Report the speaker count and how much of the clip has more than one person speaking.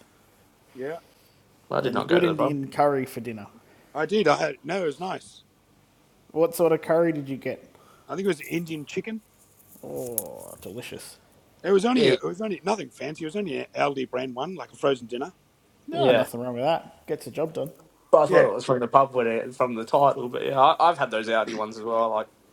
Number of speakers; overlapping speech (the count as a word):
three, about 7%